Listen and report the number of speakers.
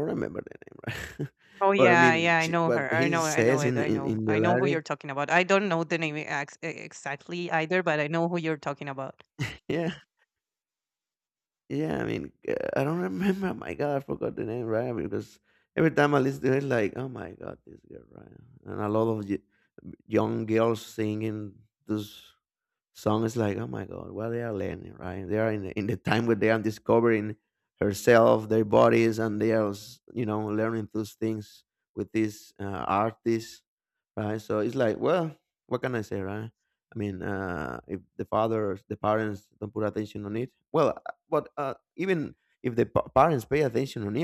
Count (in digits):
2